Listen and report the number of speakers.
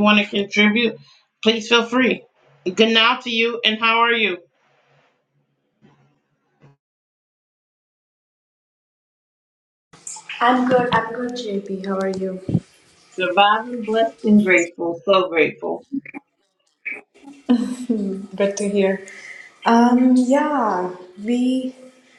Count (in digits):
2